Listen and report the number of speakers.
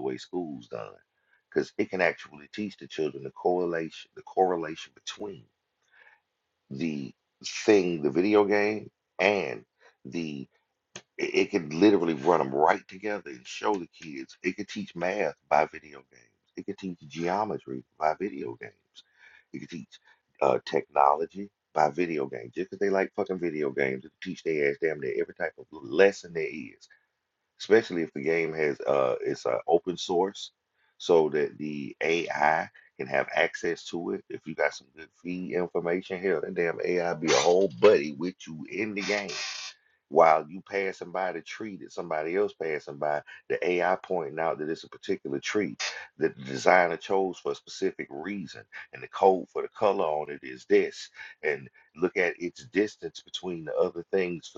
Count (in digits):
1